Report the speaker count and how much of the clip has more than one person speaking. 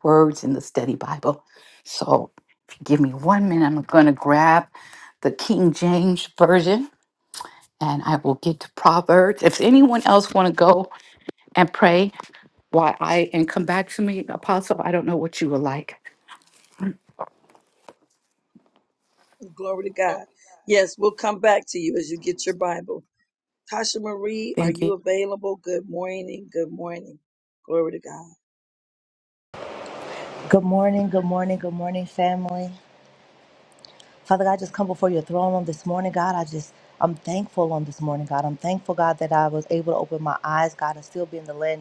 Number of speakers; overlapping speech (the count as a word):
three, about 1%